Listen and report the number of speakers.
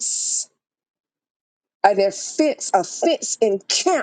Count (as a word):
one